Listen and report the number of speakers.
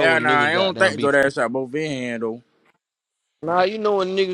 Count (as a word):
two